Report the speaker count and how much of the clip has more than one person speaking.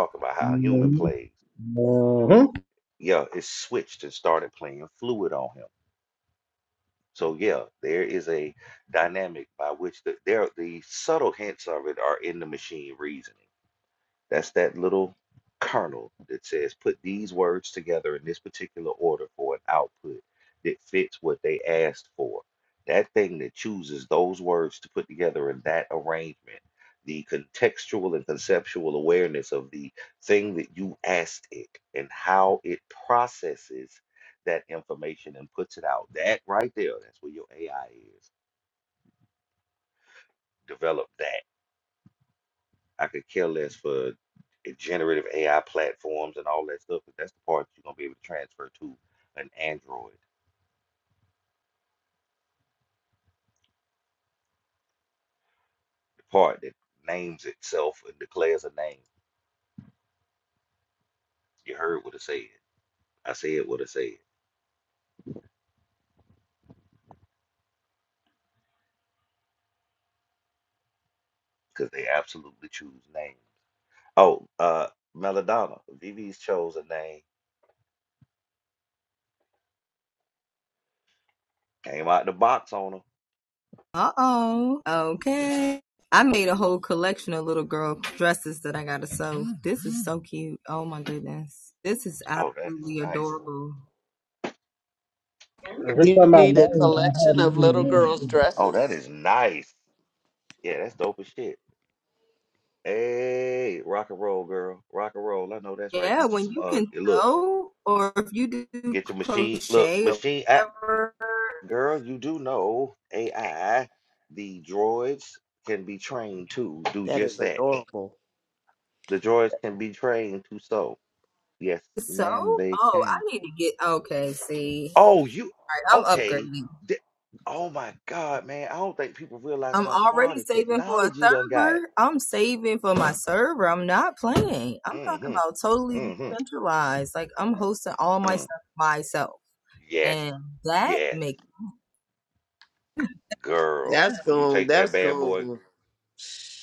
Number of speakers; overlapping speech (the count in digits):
4, about 10%